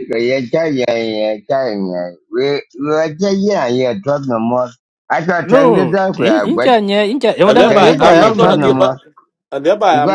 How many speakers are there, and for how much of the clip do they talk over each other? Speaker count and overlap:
3, about 29%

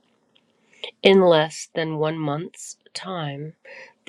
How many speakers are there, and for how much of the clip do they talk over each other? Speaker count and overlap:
1, no overlap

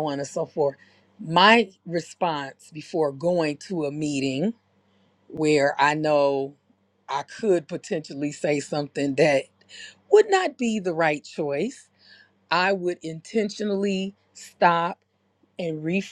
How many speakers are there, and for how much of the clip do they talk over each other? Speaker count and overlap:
1, no overlap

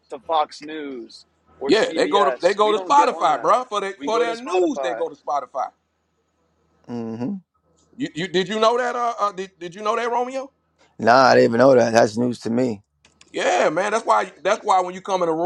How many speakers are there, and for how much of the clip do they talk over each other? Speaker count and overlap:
3, about 19%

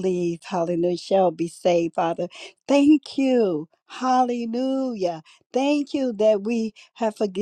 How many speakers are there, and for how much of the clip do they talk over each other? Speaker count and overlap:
1, no overlap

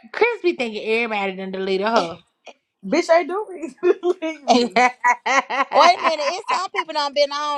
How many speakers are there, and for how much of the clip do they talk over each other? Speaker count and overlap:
3, no overlap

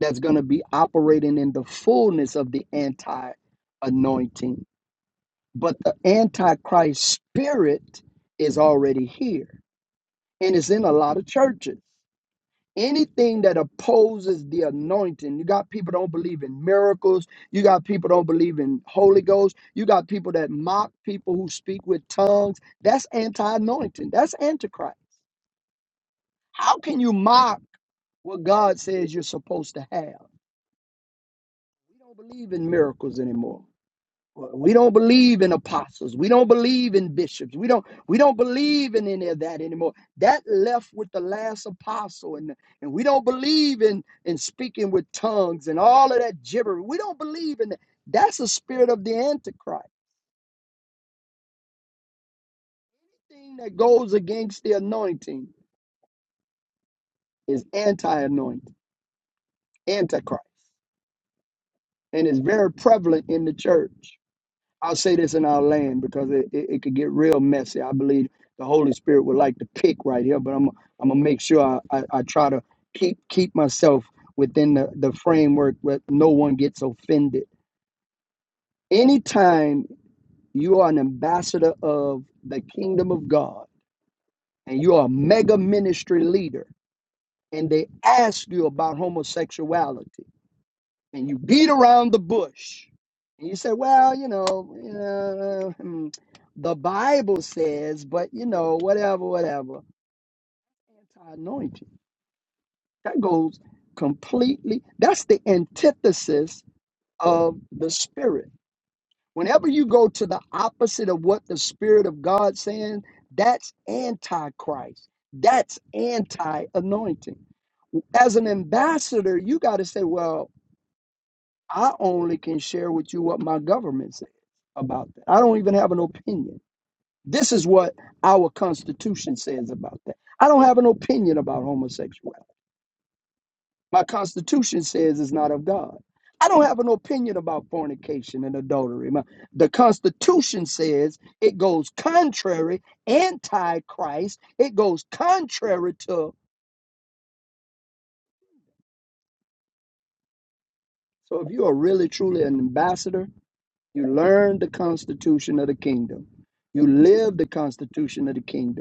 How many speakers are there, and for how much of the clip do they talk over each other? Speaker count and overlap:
1, no overlap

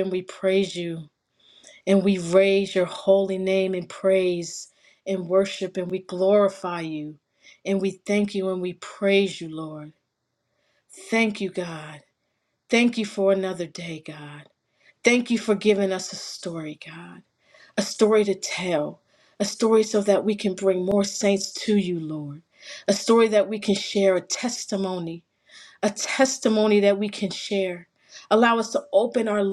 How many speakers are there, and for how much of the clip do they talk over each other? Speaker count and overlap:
1, no overlap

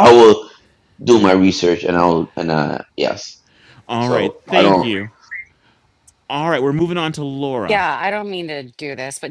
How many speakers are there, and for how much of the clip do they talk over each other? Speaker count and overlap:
3, about 10%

